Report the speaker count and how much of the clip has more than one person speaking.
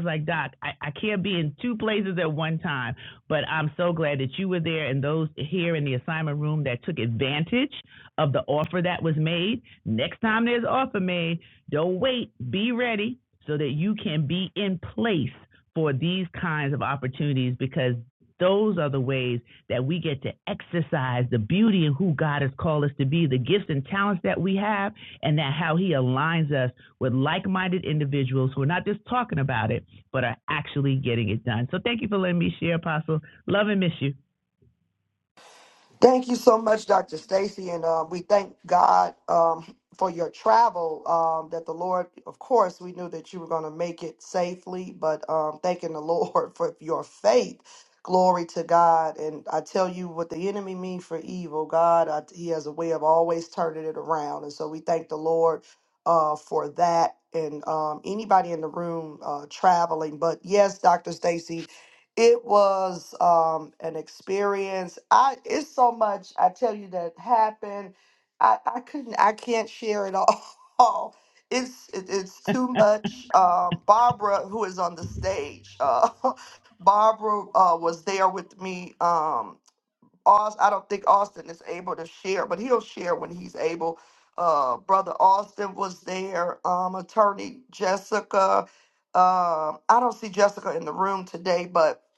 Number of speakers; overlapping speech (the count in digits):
2, no overlap